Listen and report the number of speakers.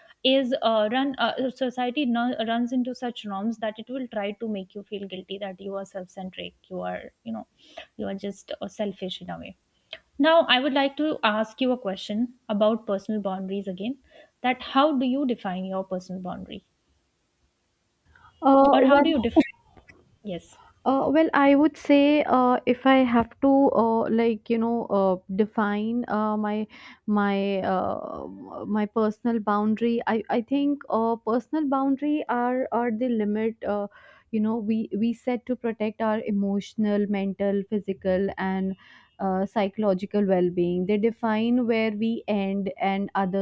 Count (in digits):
2